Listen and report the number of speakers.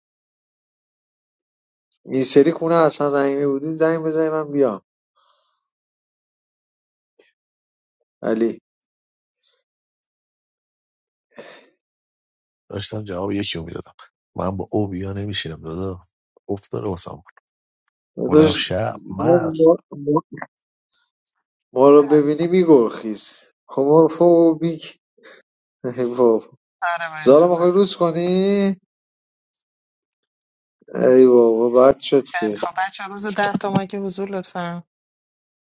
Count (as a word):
three